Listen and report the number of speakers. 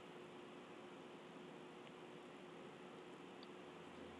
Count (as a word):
zero